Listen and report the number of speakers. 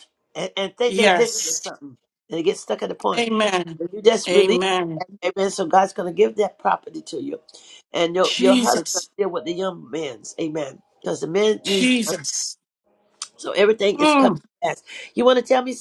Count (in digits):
2